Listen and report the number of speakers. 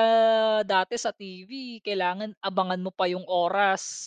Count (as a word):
one